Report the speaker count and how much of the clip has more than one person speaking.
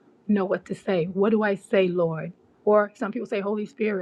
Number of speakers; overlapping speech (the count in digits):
1, no overlap